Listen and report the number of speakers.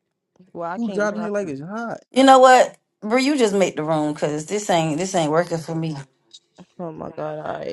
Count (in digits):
3